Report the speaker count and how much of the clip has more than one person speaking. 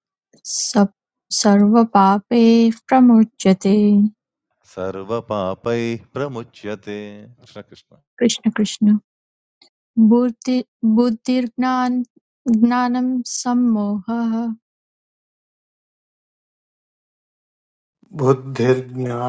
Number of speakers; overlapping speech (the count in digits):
3, no overlap